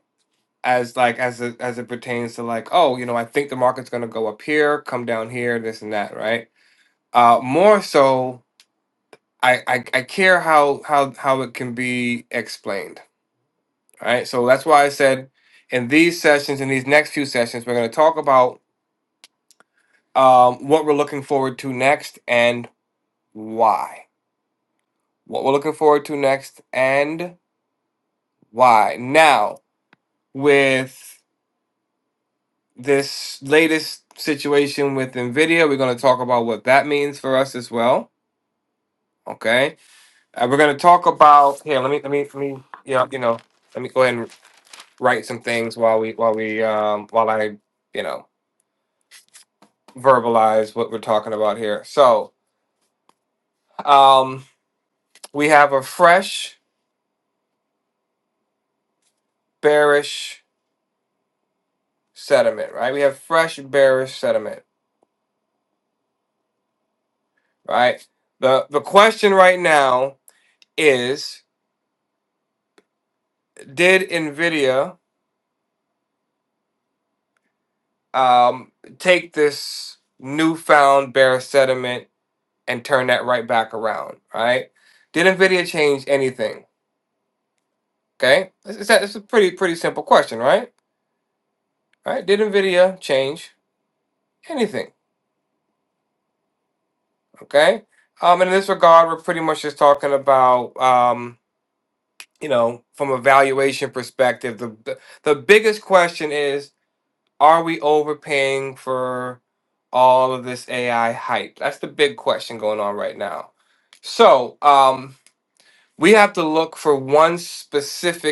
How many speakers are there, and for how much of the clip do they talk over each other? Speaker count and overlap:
one, no overlap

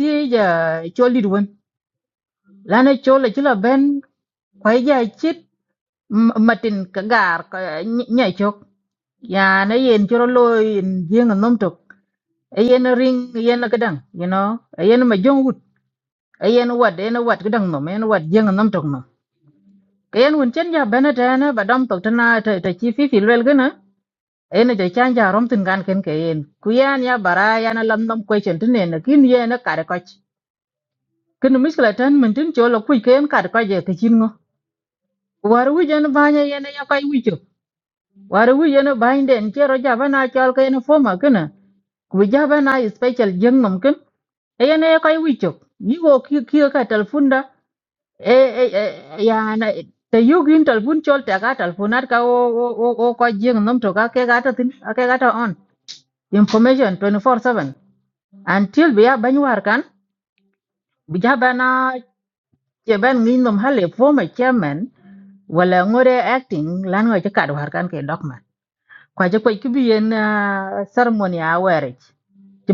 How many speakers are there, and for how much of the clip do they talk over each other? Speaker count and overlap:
one, no overlap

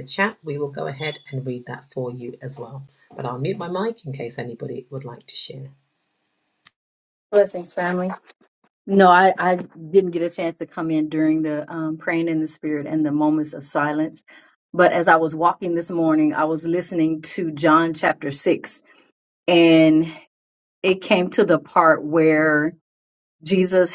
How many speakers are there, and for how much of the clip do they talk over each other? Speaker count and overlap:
two, no overlap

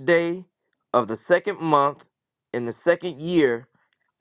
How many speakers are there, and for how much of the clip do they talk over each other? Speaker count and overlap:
one, no overlap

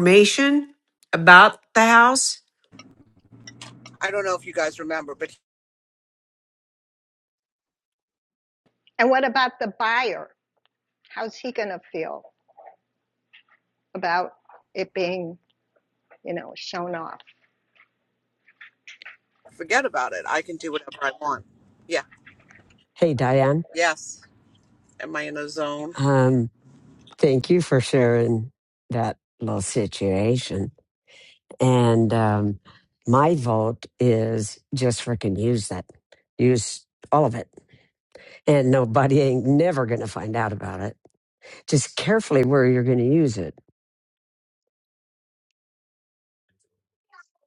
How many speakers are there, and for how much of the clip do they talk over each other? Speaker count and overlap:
four, no overlap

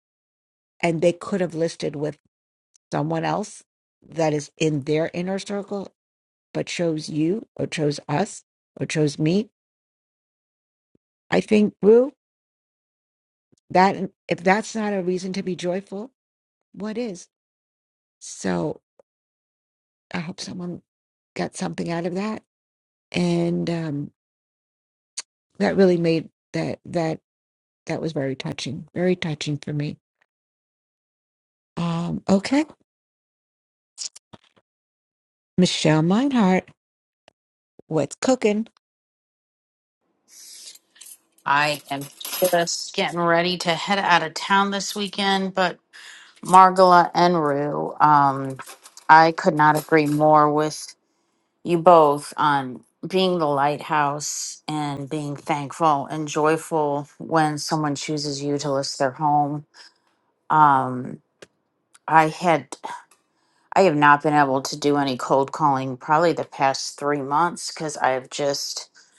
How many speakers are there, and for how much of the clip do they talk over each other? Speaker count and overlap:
two, no overlap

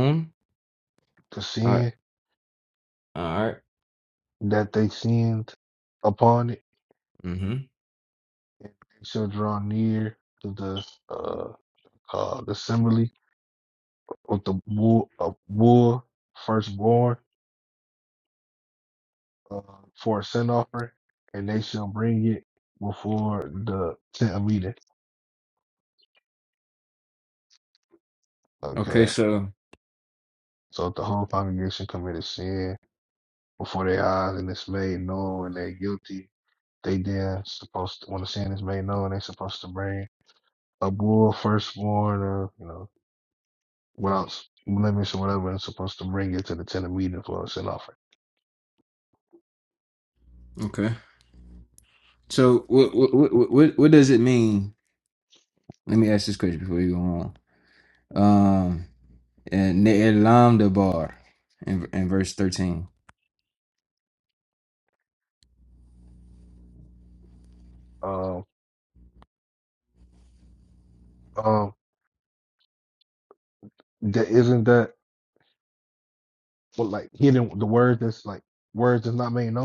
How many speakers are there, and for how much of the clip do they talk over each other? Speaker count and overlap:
two, about 1%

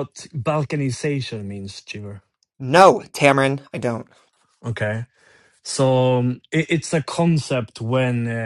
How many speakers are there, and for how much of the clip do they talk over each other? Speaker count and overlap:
two, no overlap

